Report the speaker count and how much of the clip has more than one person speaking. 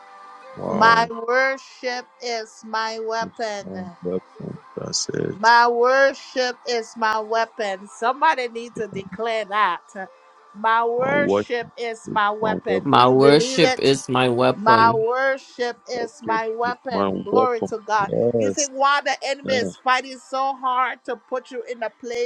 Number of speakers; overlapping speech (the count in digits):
3, about 21%